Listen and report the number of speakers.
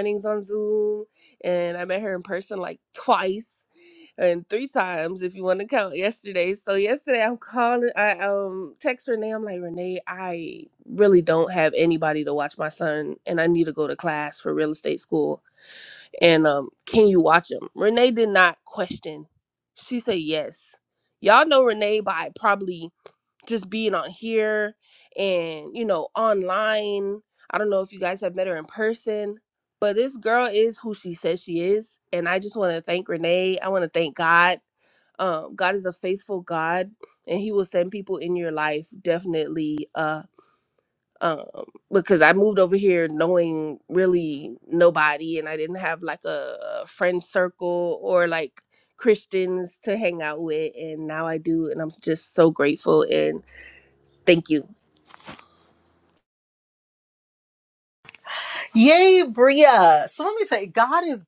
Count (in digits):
2